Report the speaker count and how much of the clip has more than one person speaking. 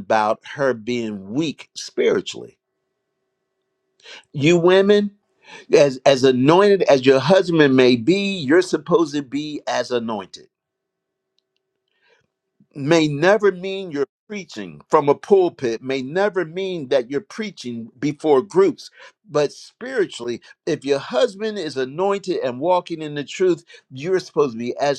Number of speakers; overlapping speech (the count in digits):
1, no overlap